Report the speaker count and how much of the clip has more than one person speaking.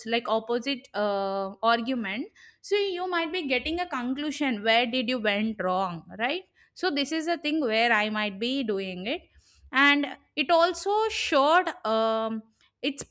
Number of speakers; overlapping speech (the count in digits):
1, no overlap